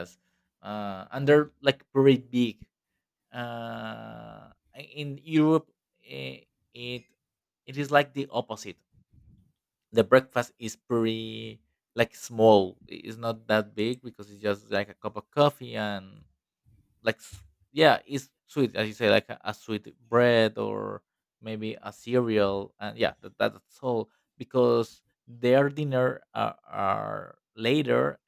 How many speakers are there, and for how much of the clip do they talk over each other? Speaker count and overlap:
1, no overlap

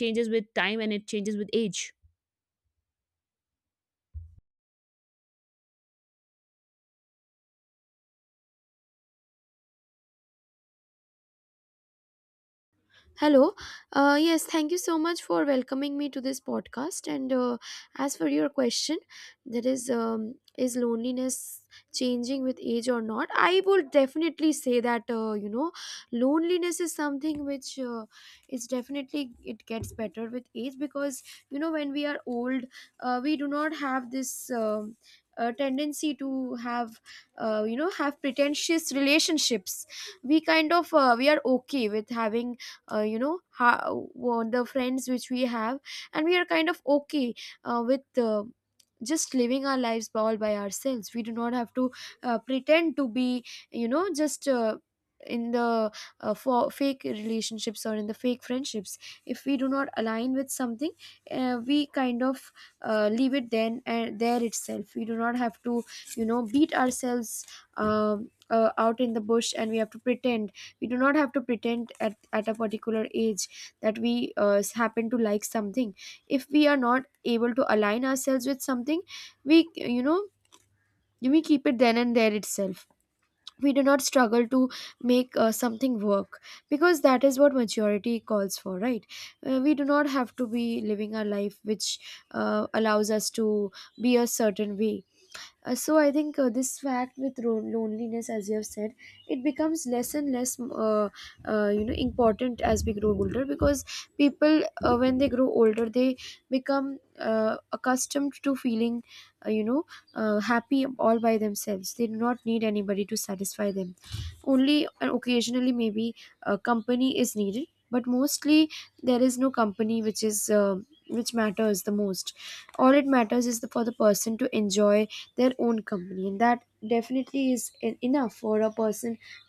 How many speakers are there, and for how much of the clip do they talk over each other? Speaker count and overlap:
2, no overlap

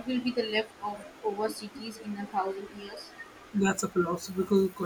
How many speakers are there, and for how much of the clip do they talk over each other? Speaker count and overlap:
2, no overlap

